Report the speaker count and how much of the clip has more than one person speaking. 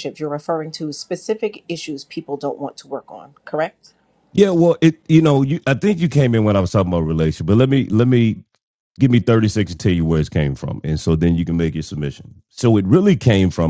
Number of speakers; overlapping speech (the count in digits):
2, no overlap